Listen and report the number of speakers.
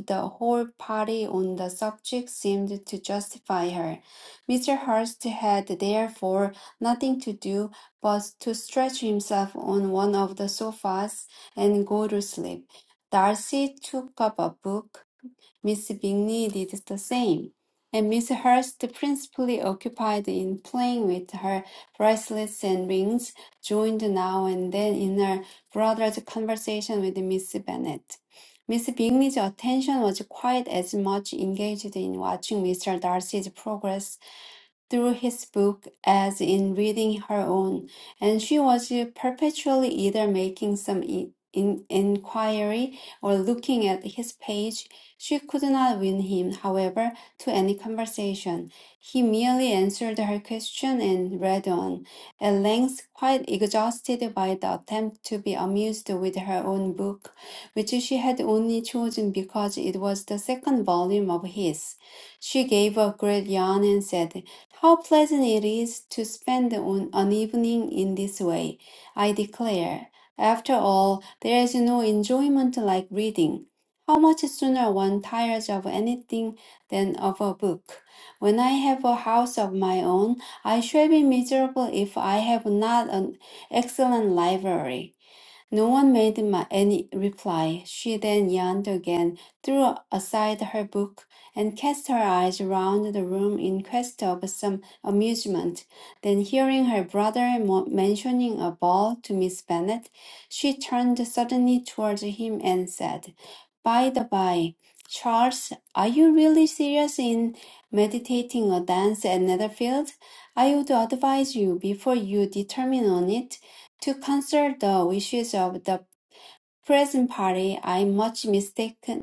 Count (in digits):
1